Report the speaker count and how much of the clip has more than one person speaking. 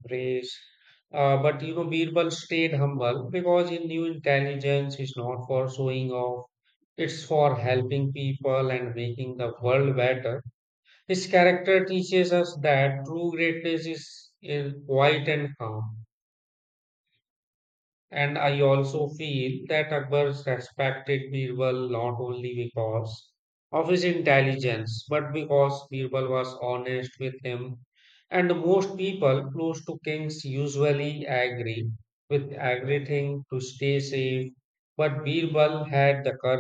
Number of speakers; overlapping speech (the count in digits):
1, no overlap